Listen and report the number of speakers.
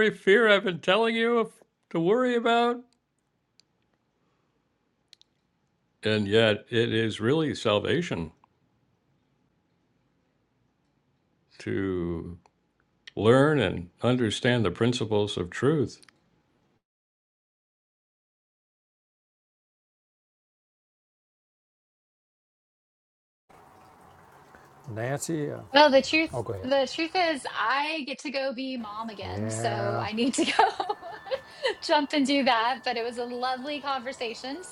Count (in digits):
3